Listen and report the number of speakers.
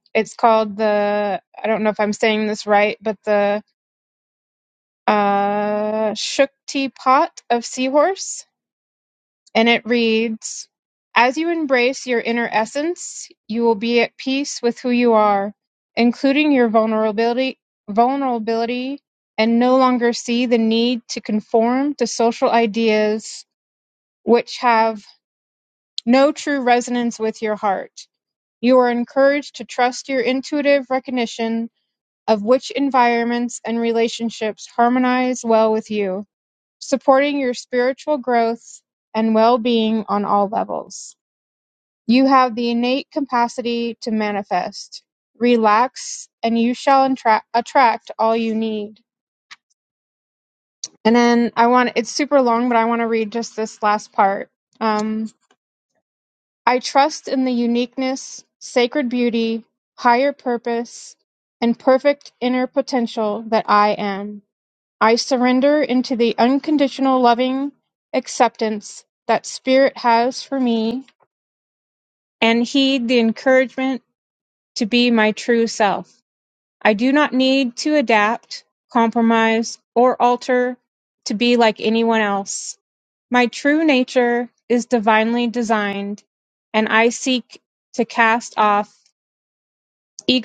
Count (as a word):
one